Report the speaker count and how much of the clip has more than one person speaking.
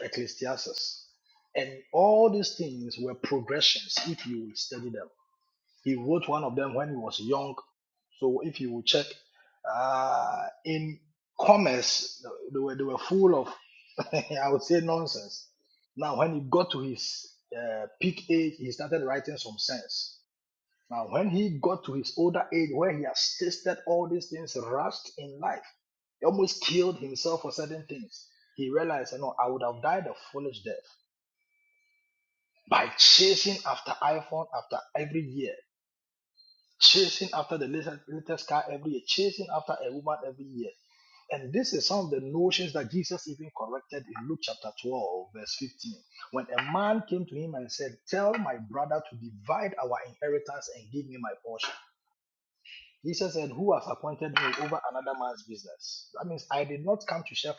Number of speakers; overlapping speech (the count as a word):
one, no overlap